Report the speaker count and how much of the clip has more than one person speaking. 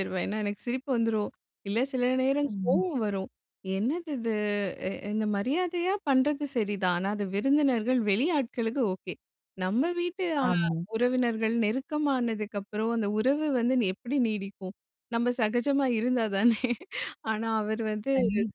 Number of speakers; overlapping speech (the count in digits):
2, about 3%